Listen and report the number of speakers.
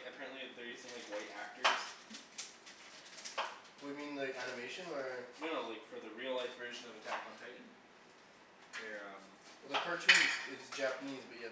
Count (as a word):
two